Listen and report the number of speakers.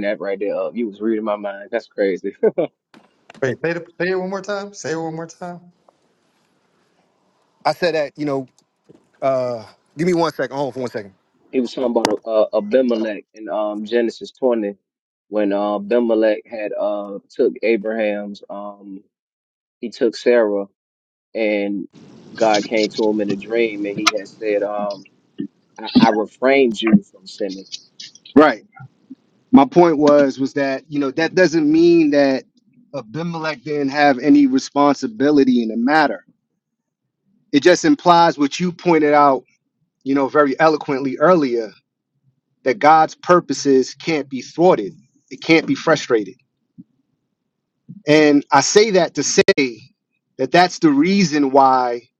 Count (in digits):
3